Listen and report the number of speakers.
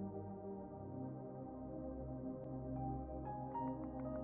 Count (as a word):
zero